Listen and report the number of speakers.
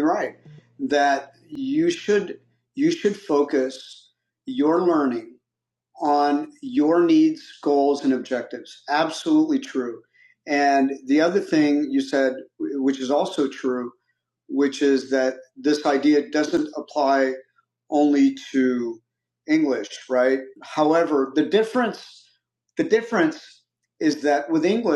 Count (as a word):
one